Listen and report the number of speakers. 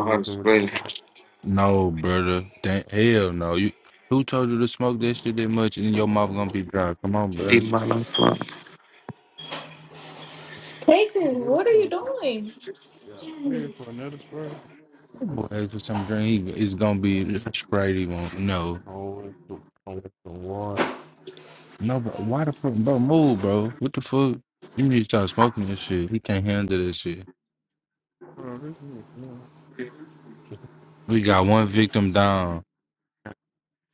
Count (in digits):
3